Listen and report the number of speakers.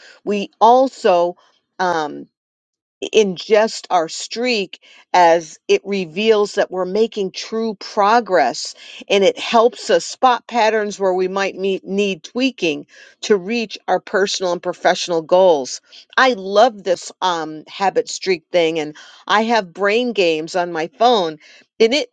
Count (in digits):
1